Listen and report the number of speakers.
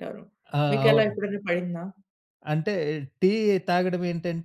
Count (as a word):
two